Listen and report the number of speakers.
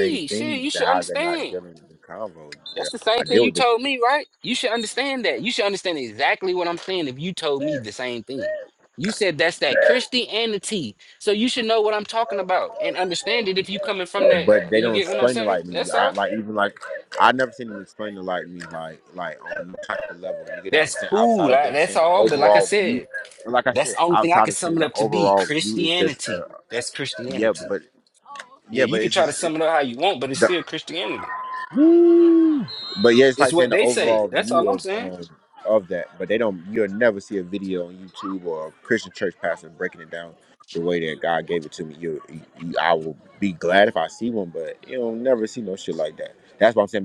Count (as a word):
two